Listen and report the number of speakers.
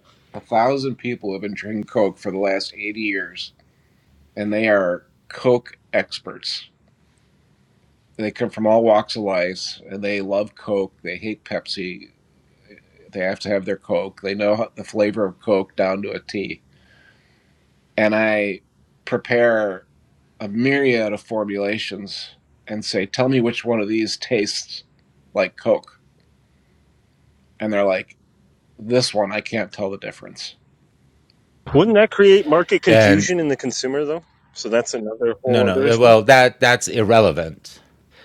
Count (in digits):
3